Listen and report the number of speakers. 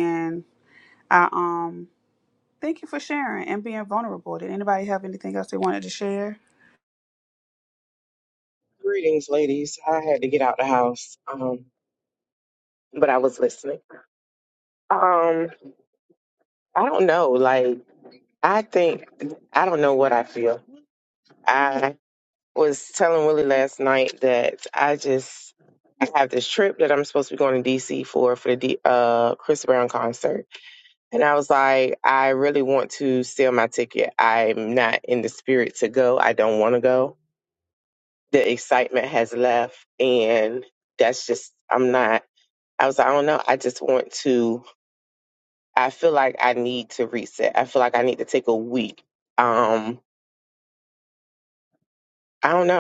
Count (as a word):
two